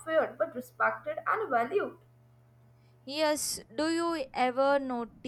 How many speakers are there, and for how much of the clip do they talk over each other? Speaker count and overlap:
2, no overlap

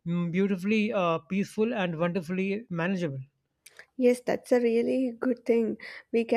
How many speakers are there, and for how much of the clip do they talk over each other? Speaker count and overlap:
2, no overlap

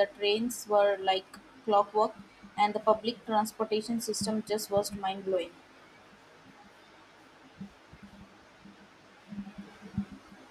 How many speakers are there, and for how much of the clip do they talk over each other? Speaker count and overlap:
1, no overlap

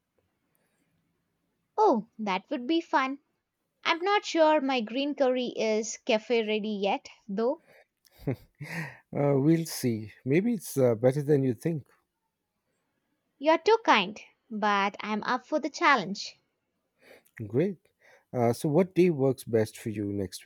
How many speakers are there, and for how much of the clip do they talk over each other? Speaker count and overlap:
2, no overlap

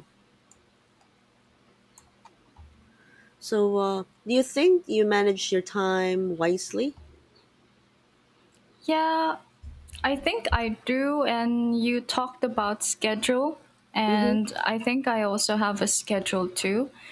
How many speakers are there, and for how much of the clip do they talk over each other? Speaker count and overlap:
2, about 2%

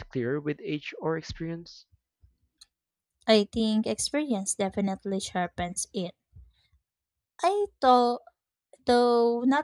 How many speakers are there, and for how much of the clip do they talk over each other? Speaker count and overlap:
2, no overlap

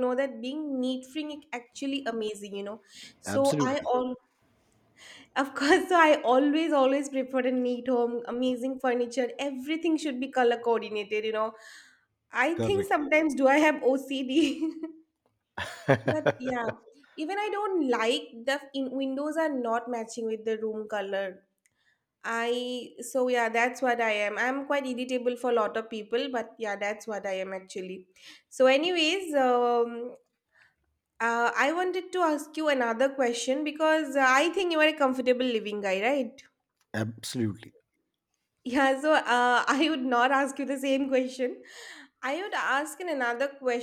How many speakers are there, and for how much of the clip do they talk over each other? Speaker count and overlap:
2, about 2%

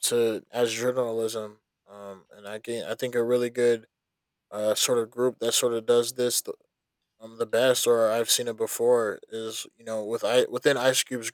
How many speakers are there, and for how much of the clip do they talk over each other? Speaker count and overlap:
1, no overlap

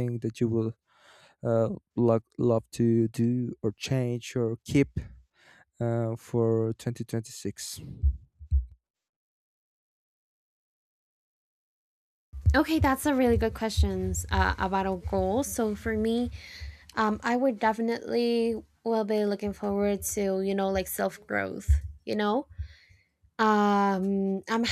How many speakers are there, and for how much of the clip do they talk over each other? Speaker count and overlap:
2, no overlap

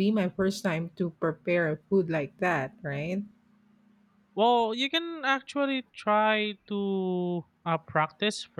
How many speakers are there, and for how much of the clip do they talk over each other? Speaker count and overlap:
2, no overlap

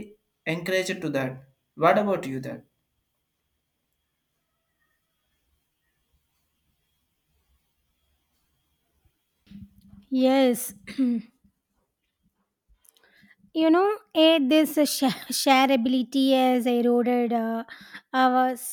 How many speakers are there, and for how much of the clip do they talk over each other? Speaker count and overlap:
2, no overlap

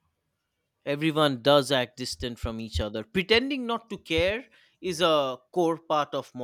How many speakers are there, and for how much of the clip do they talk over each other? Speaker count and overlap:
1, no overlap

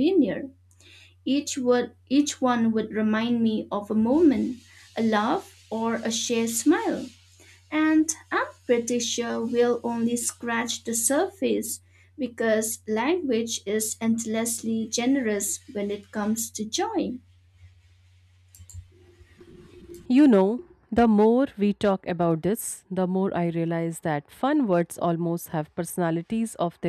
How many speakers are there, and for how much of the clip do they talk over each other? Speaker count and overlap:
2, no overlap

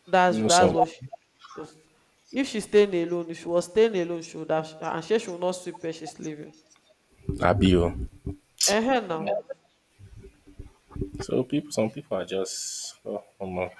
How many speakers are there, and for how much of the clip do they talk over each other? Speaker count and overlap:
2, about 4%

